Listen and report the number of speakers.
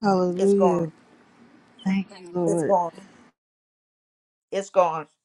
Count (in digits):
2